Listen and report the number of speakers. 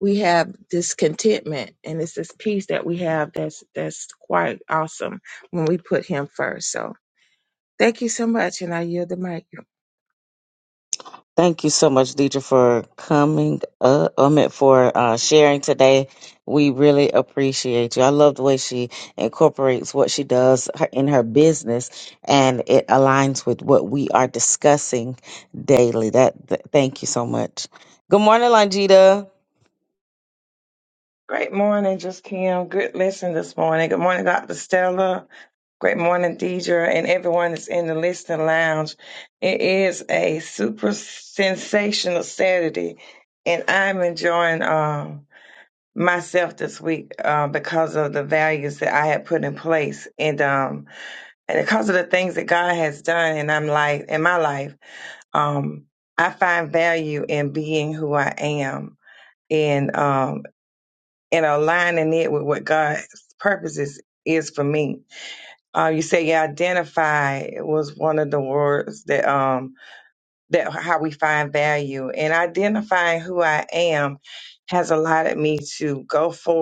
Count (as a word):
three